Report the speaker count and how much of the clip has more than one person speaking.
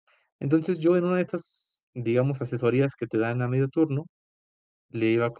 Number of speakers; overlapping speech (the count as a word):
one, no overlap